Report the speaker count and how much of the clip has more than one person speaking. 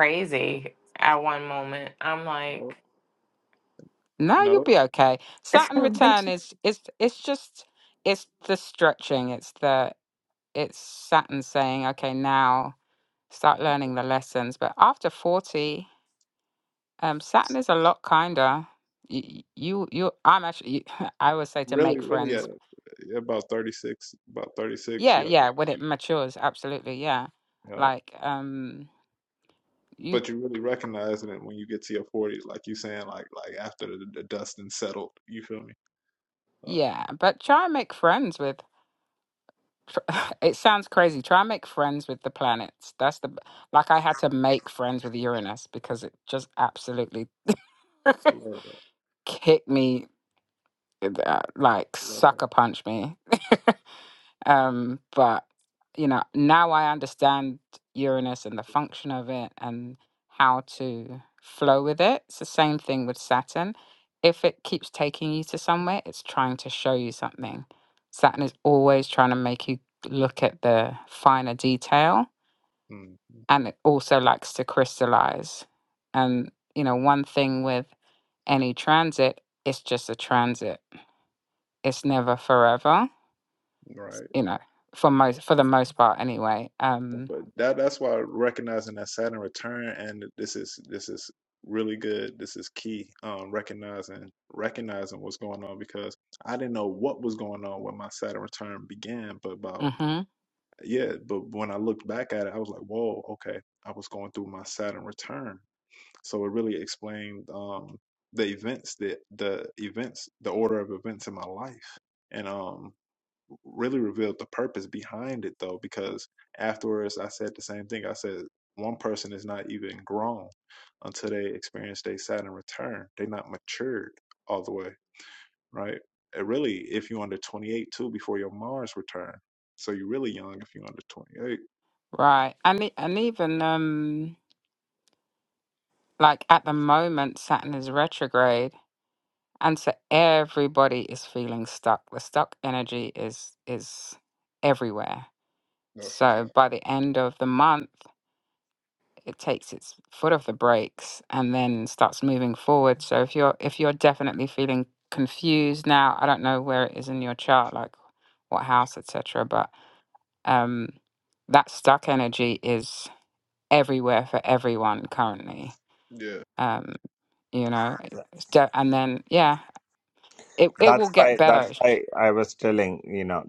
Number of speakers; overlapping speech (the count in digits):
4, about 2%